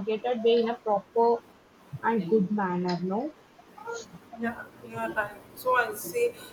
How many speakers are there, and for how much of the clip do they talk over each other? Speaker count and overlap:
two, no overlap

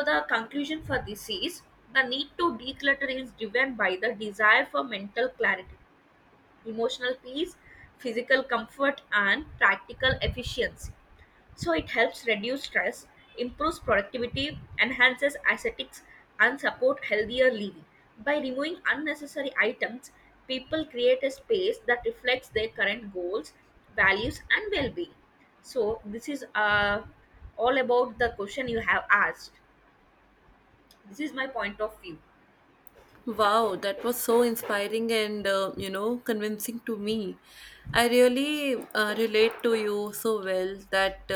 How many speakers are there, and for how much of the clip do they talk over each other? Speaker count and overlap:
two, no overlap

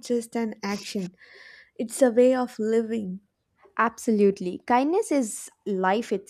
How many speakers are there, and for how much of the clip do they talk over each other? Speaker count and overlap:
two, no overlap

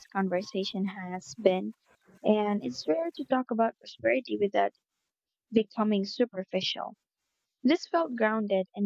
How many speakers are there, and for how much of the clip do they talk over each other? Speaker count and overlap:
one, no overlap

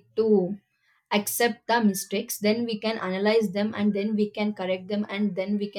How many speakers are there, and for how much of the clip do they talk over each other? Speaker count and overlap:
one, no overlap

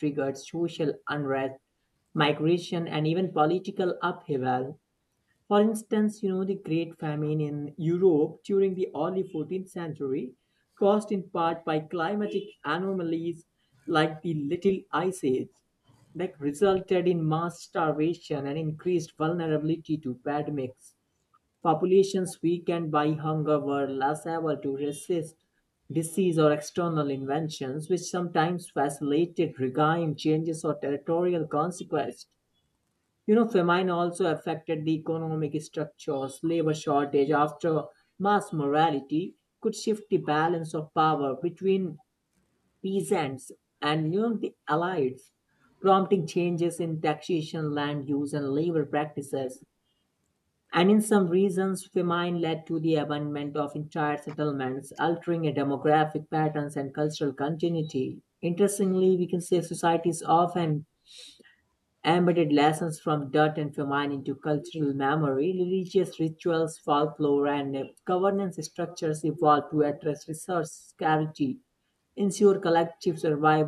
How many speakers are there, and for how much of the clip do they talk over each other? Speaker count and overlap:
one, no overlap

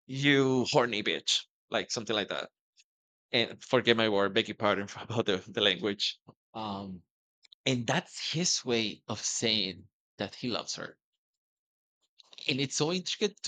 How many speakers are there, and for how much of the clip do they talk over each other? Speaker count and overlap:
one, no overlap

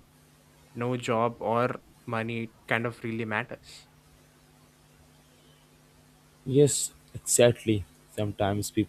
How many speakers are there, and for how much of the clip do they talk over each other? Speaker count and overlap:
two, no overlap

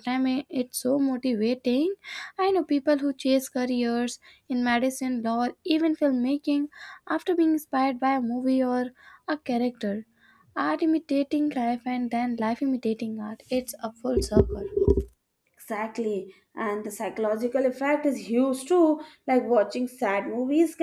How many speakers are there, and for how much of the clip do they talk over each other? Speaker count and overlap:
two, no overlap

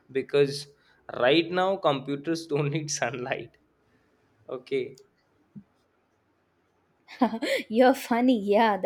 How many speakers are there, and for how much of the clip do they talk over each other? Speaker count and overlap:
two, no overlap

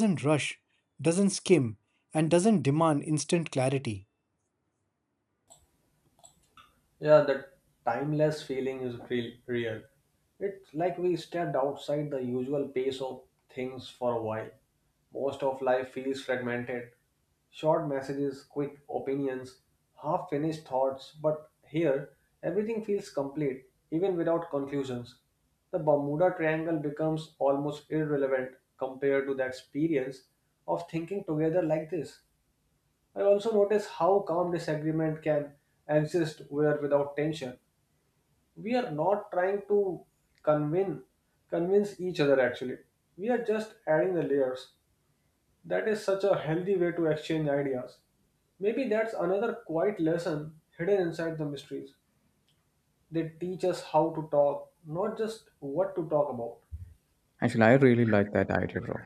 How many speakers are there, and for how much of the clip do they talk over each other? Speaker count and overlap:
three, no overlap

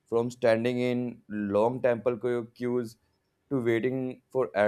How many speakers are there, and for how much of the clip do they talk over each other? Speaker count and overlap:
one, no overlap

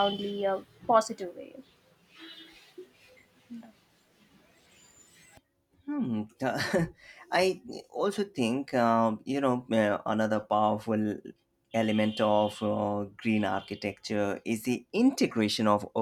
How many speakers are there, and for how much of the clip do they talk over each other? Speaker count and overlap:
two, no overlap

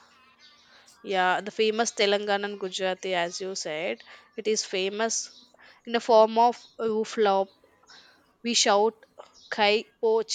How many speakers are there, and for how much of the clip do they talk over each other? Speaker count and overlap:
one, no overlap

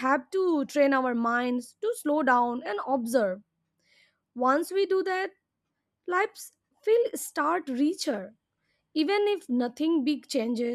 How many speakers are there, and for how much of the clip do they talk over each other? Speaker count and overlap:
one, no overlap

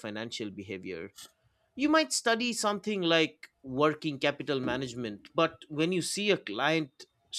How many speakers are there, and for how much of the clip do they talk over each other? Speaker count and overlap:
one, no overlap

